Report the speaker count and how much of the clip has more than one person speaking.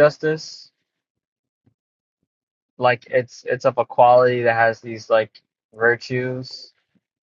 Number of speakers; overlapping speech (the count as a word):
one, no overlap